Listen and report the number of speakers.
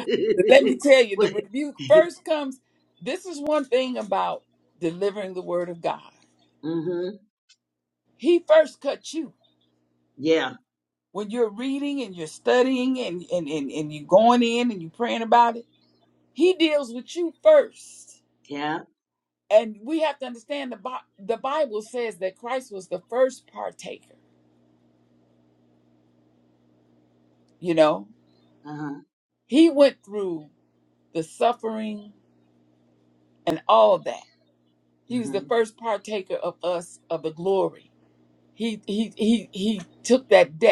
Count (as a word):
two